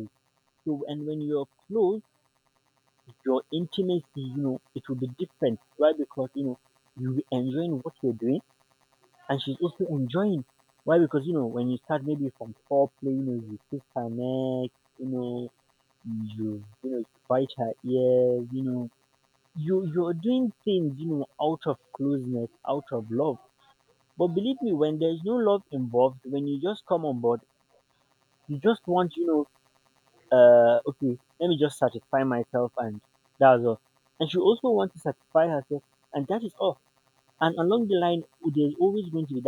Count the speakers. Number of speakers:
one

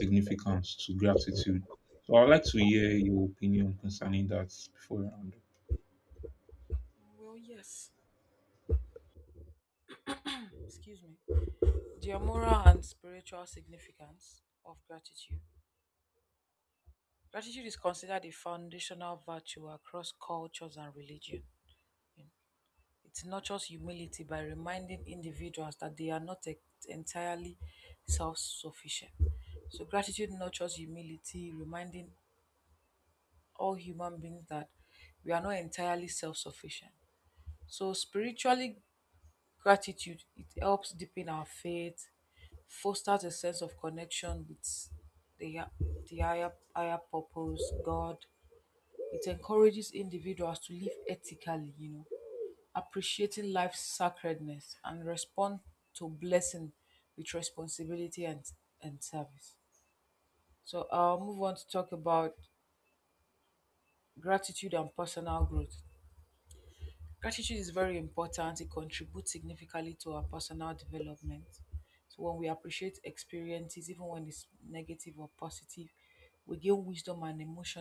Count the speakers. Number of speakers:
two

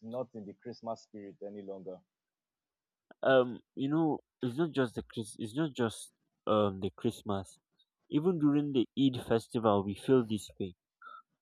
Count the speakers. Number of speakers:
two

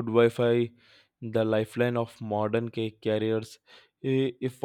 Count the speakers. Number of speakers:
one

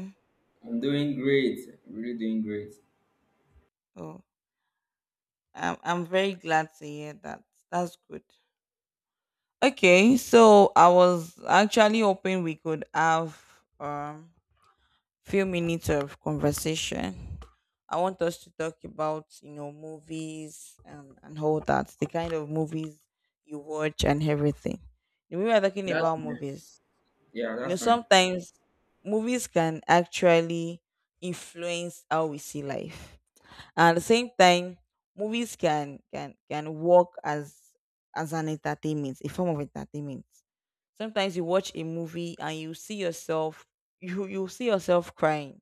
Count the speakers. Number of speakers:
two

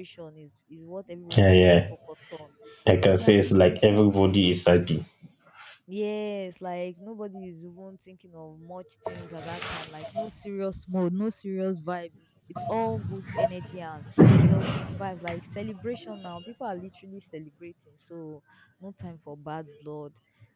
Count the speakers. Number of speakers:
two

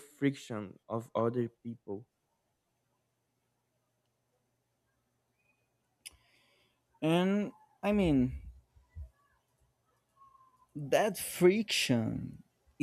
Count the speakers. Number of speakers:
two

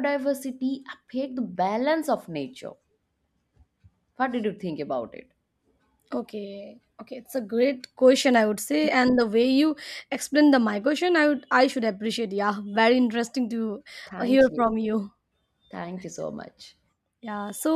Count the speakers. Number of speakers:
two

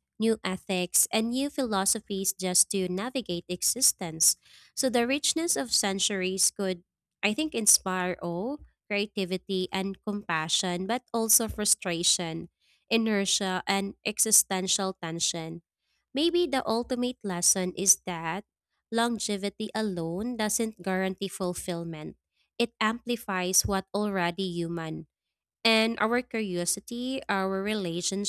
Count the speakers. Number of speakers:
one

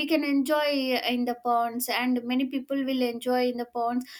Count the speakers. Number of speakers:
one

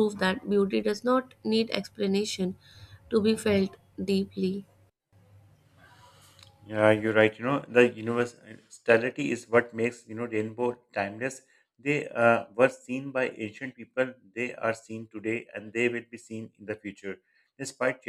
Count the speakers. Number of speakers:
two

